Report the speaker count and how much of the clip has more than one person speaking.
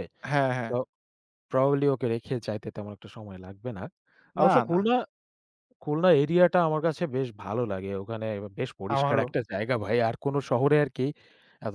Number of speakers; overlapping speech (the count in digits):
2, about 8%